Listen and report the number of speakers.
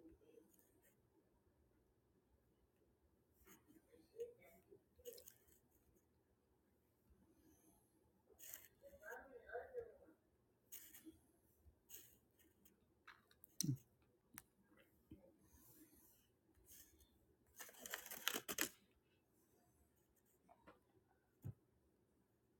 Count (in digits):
0